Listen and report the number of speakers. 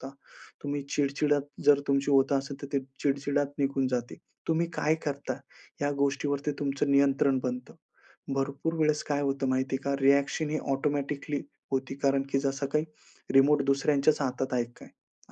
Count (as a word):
one